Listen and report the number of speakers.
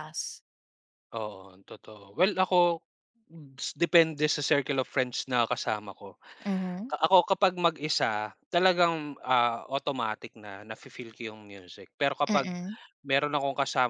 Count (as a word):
two